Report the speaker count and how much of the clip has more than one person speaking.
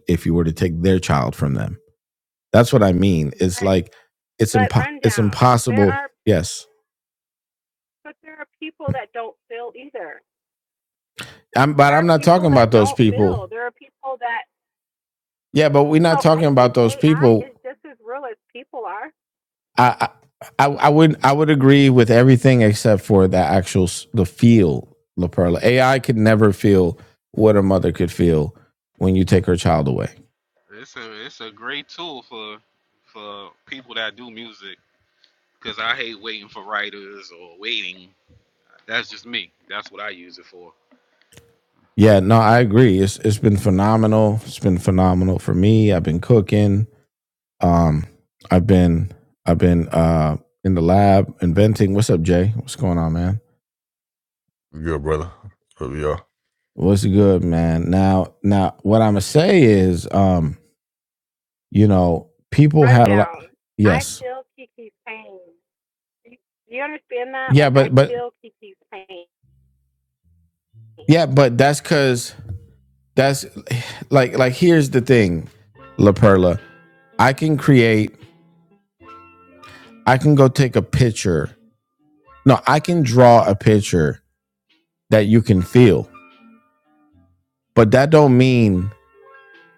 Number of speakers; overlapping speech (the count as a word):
four, about 7%